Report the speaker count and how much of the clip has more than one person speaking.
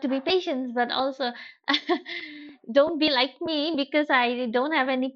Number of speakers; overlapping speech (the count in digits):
1, no overlap